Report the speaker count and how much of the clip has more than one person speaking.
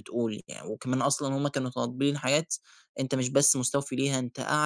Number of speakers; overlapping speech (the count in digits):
1, no overlap